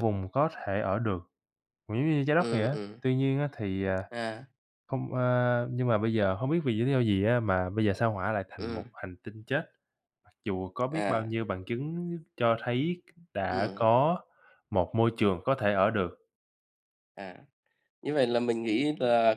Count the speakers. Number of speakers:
2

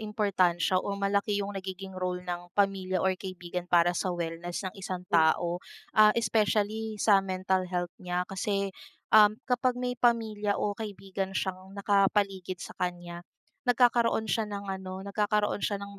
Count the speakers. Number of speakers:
1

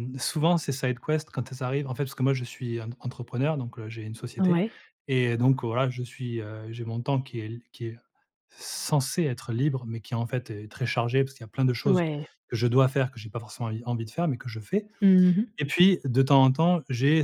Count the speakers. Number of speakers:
2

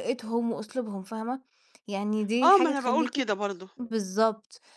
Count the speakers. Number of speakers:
2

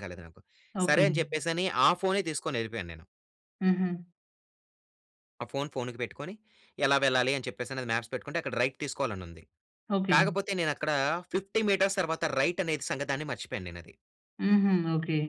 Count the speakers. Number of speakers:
2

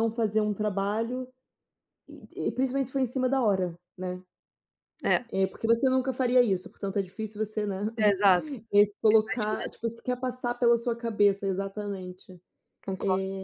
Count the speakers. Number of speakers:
2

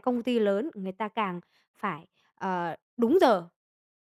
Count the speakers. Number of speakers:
1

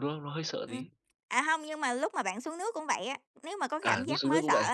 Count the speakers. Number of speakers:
2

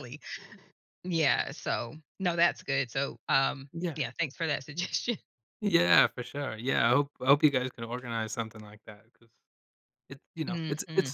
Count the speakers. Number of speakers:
2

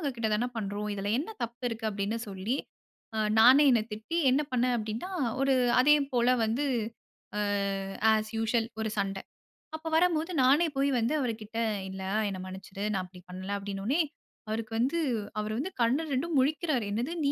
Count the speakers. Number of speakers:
1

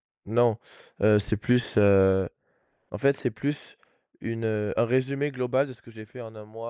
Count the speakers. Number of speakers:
1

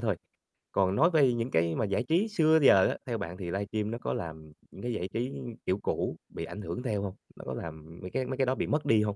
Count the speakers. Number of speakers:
1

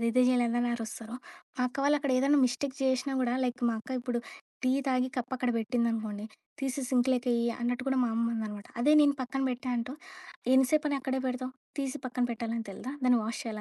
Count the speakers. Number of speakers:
1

